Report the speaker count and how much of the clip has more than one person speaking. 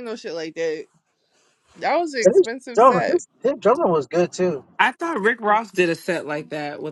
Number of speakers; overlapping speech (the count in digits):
3, about 9%